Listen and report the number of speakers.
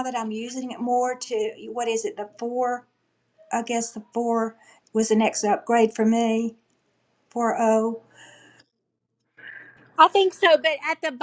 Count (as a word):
two